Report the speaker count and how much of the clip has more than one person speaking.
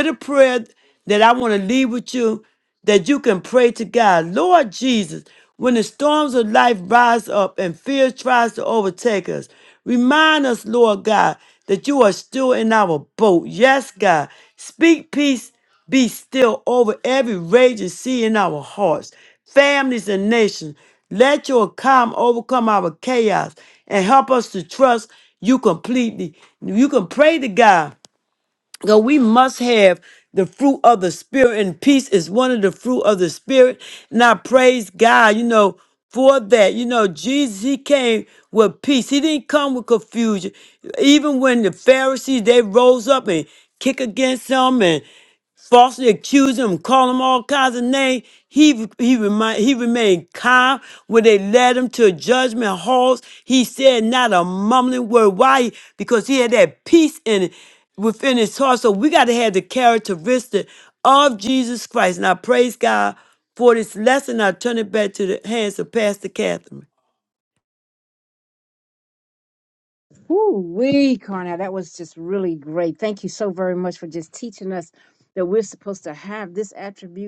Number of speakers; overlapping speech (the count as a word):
two, no overlap